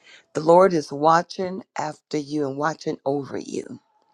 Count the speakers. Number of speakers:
one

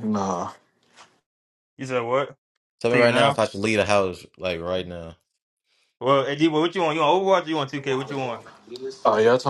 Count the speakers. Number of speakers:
three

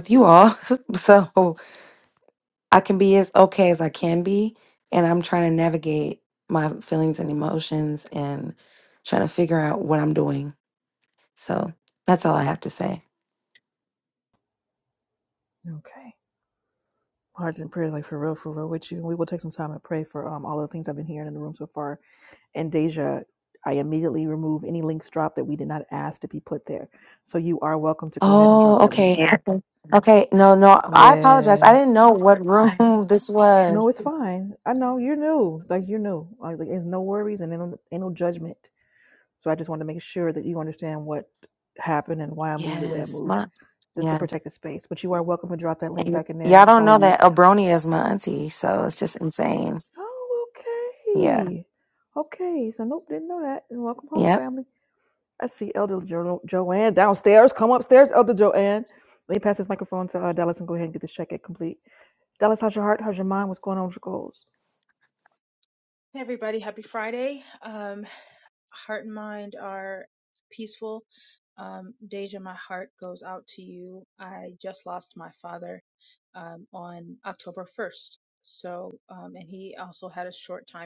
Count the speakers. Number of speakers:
three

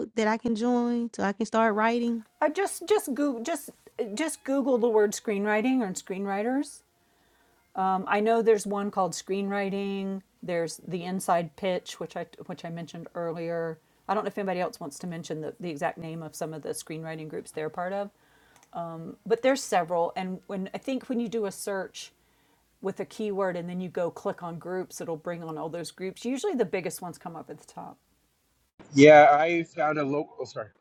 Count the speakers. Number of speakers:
three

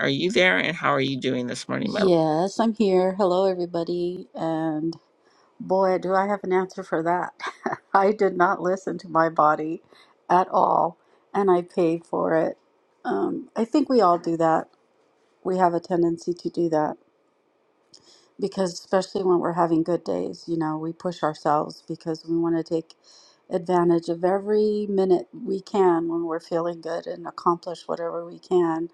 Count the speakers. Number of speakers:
two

